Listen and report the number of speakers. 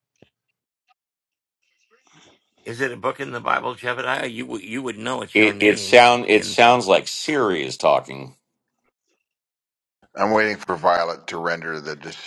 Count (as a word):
three